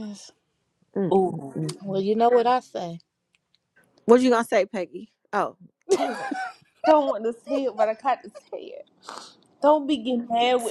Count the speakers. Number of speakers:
3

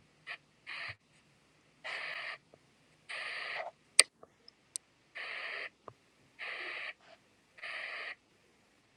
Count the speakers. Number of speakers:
0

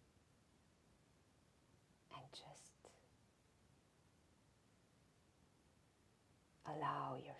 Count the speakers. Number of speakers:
1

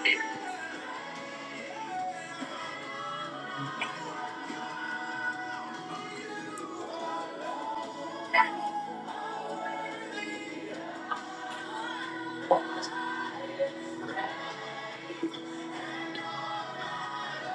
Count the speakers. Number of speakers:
0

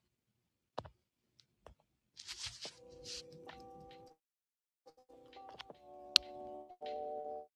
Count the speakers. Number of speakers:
0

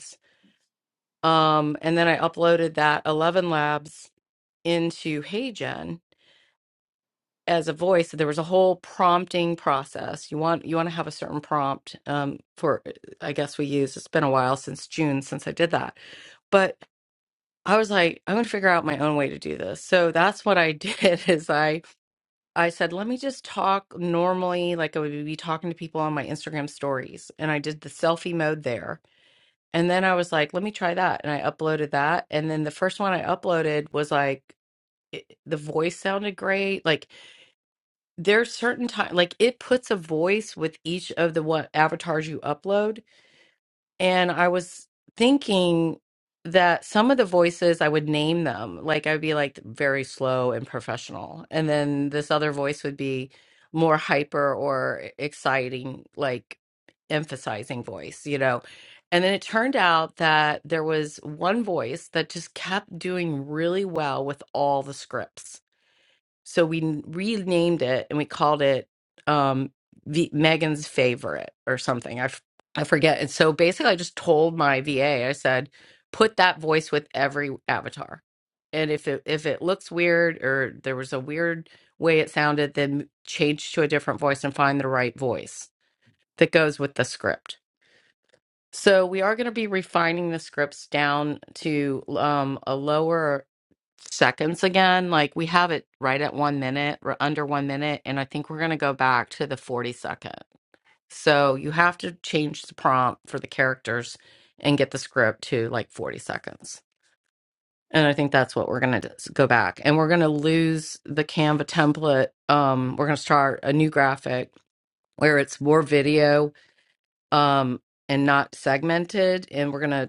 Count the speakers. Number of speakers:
1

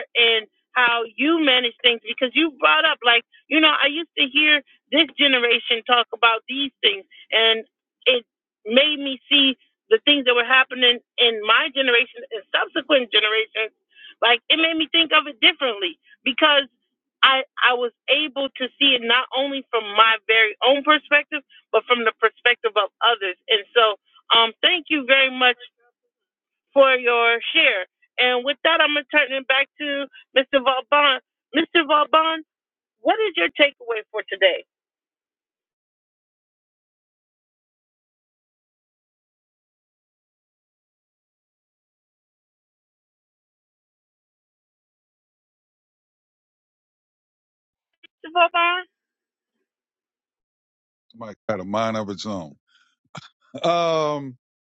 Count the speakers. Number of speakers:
2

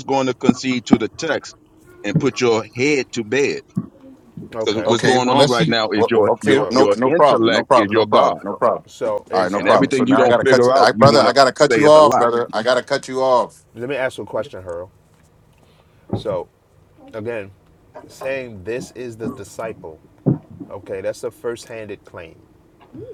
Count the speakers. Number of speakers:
3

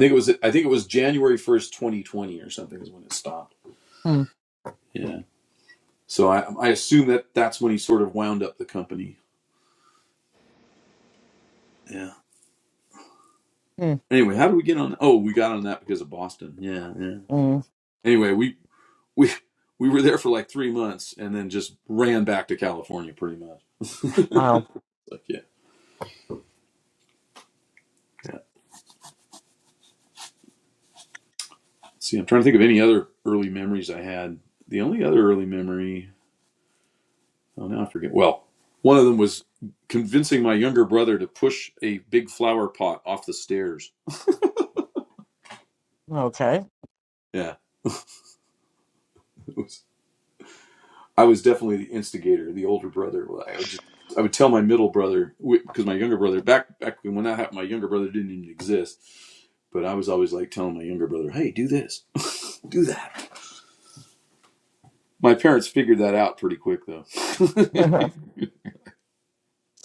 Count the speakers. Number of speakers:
2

